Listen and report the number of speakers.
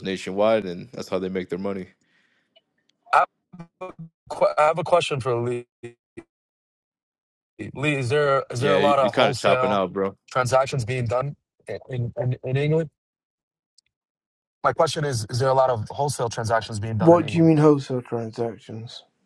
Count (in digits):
3